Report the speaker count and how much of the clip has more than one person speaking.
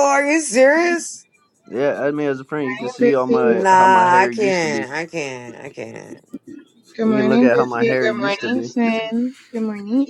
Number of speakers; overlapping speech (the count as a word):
three, about 37%